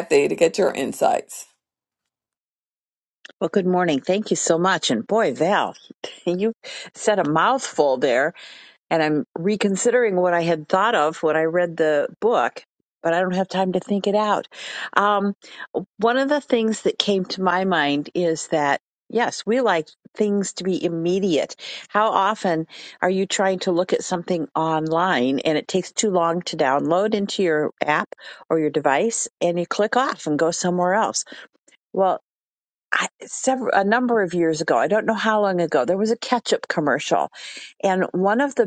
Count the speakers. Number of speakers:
2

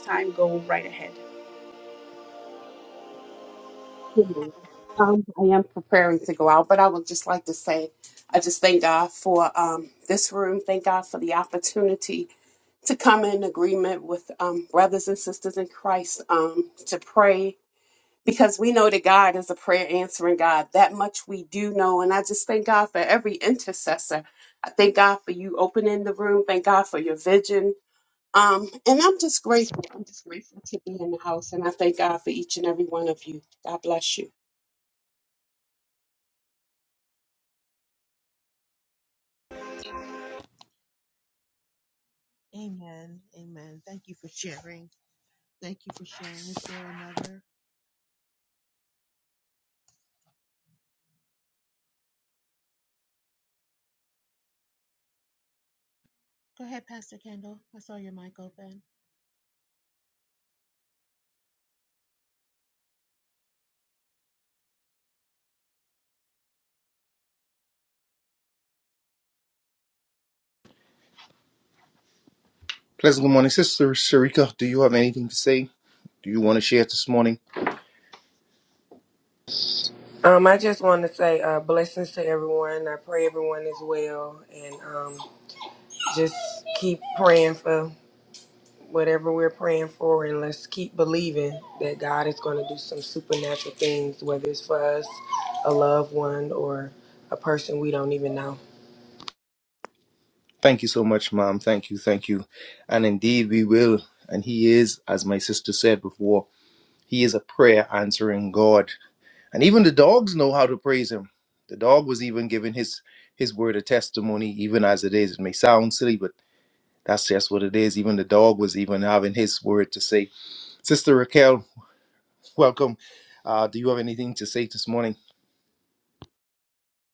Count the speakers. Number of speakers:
5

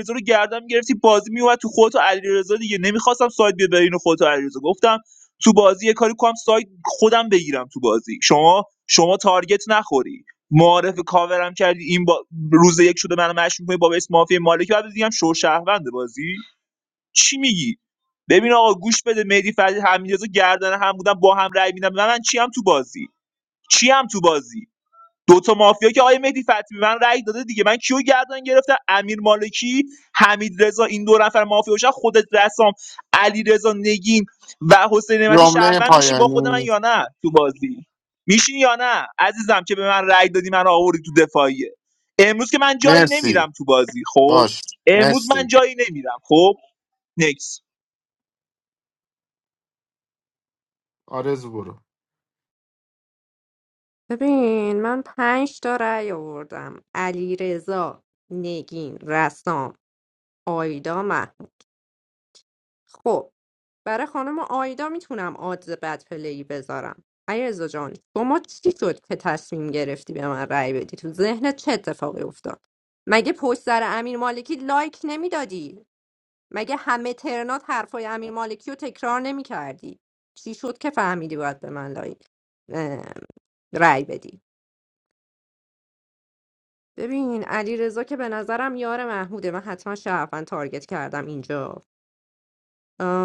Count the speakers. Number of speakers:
3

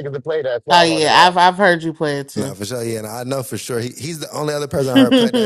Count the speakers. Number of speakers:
3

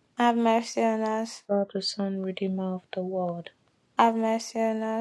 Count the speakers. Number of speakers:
2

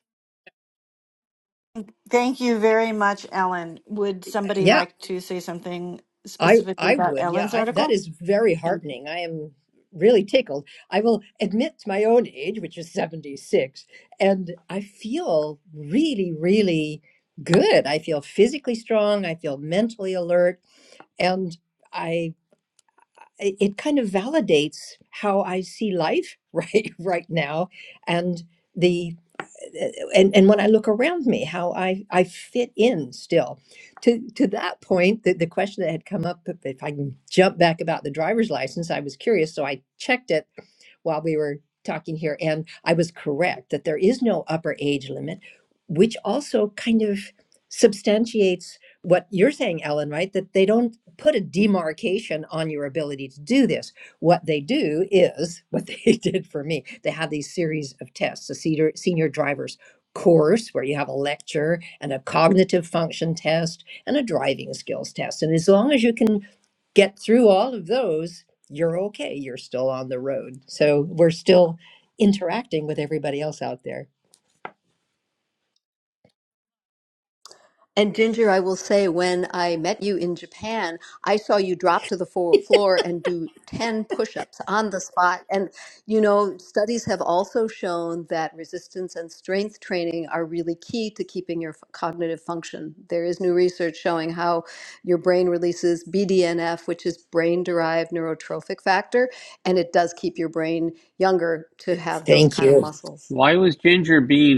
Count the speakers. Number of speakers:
4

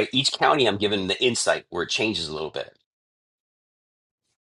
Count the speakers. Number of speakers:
1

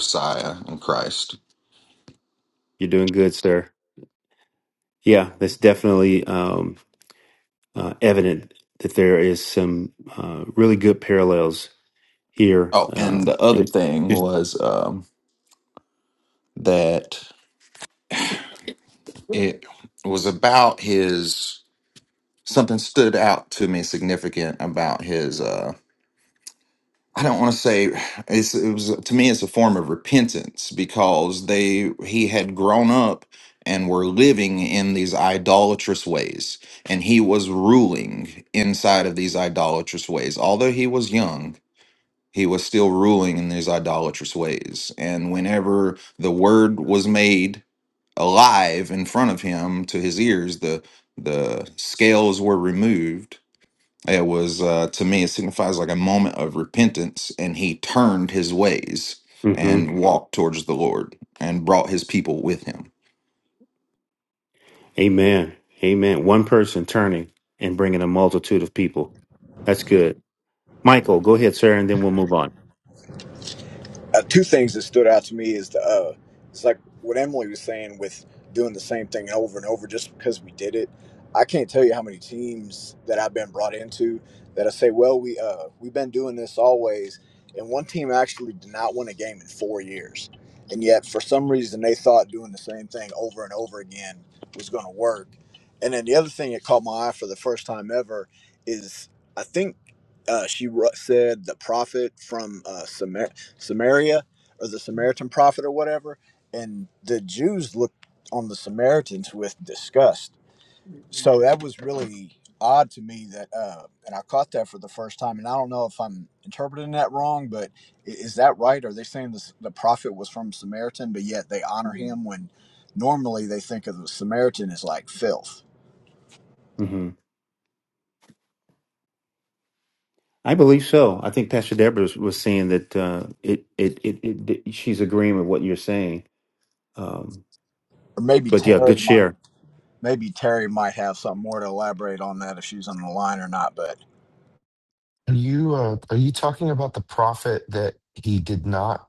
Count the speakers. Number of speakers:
4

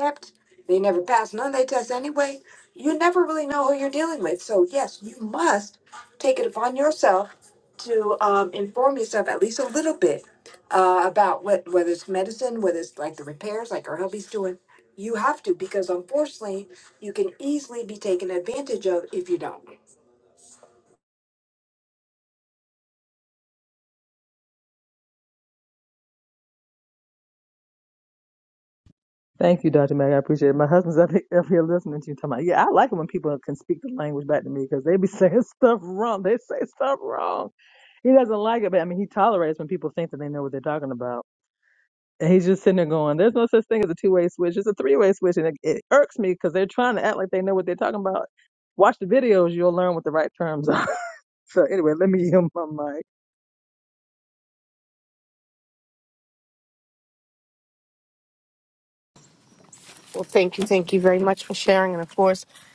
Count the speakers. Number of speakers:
3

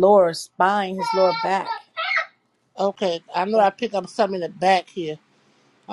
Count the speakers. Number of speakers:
2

